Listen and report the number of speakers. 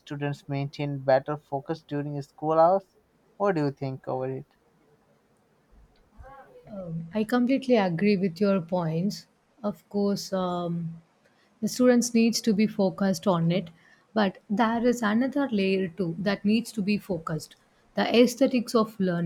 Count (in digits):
2